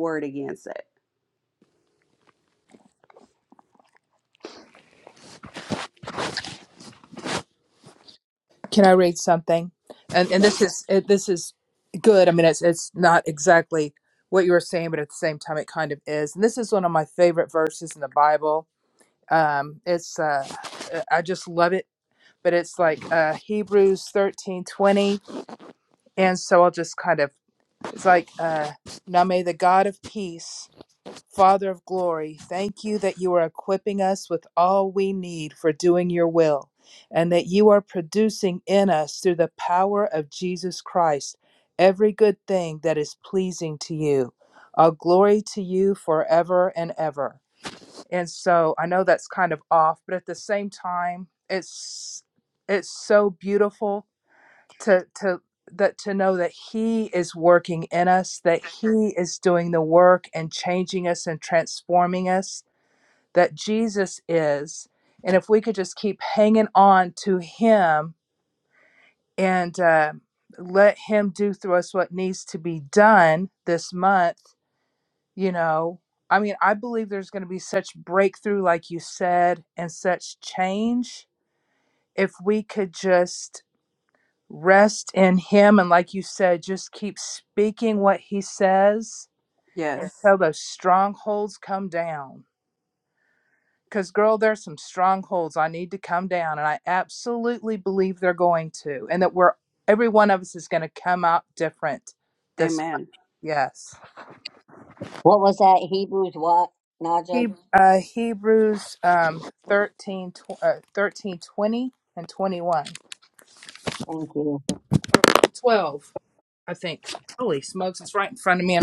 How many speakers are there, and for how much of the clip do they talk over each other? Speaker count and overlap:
3, about 1%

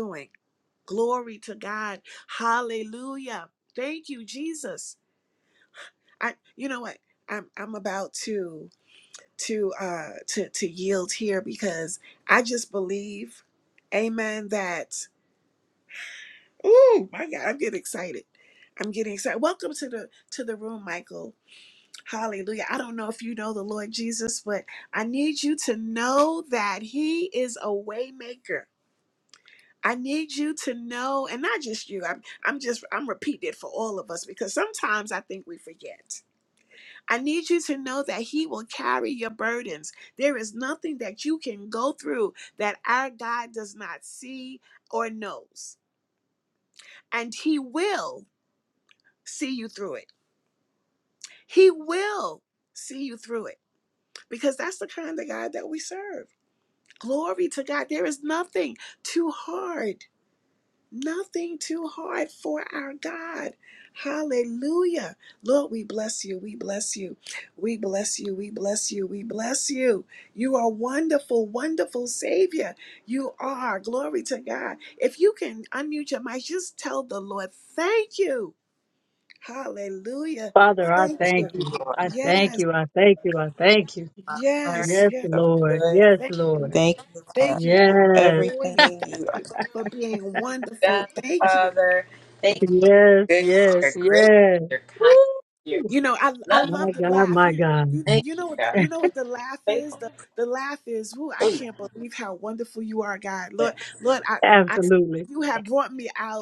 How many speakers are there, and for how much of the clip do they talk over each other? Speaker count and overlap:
3, about 10%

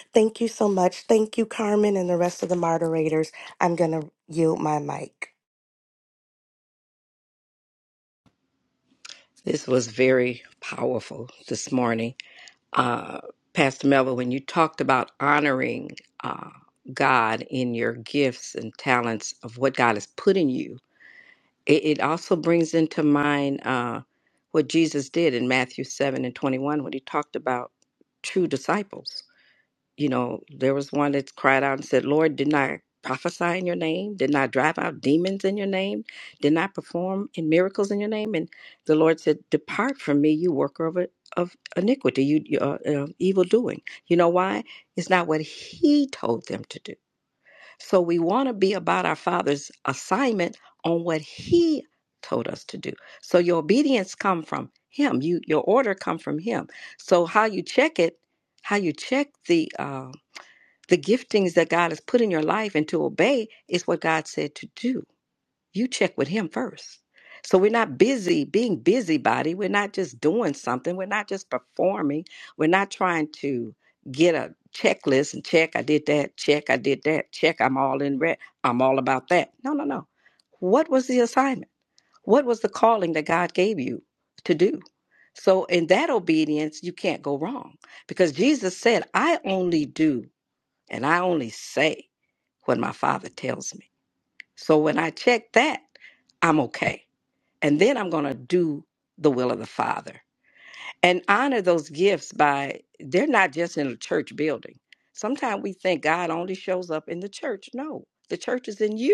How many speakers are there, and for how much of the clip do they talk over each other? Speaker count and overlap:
2, no overlap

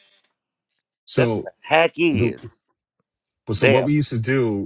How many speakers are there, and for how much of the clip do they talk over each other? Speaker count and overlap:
2, about 16%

